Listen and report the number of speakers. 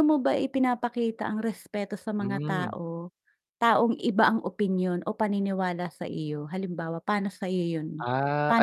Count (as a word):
two